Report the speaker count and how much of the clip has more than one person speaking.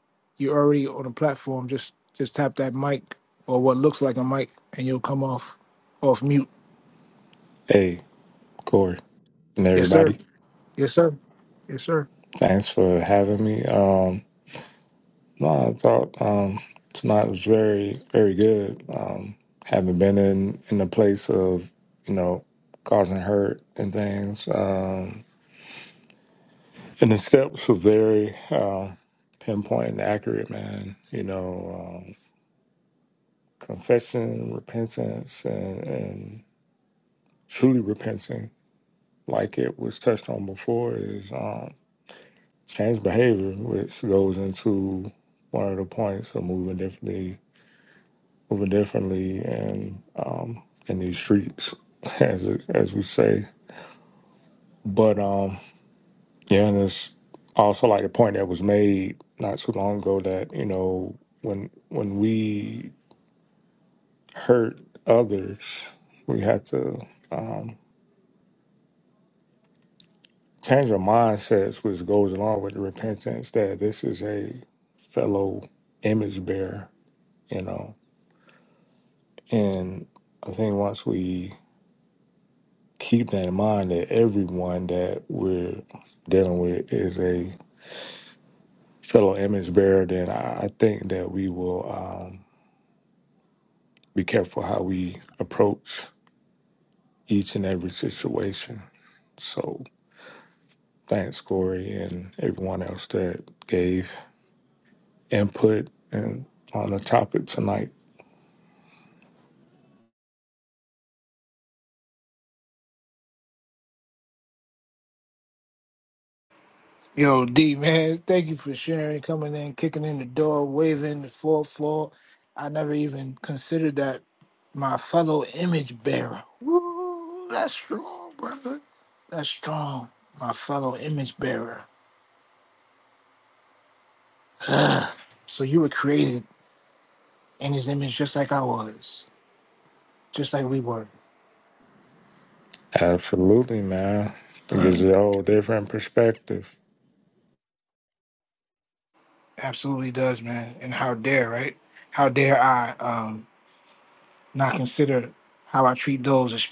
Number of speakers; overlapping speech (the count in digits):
2, under 1%